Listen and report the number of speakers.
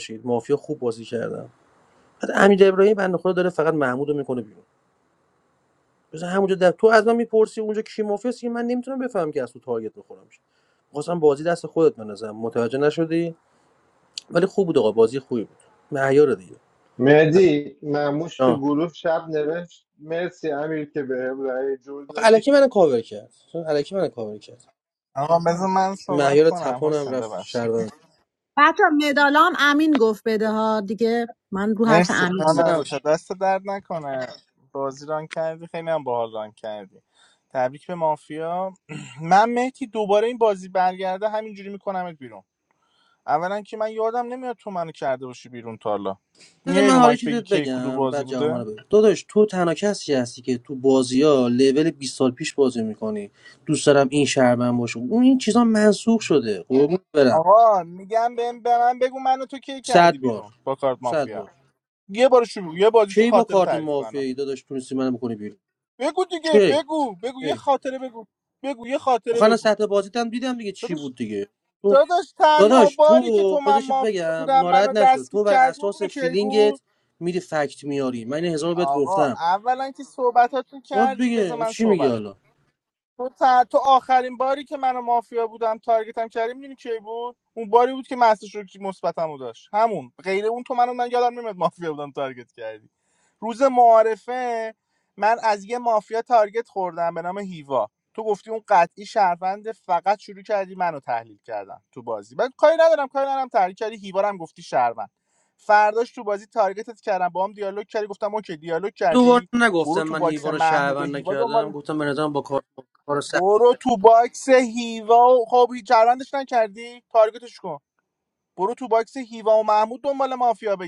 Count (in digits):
4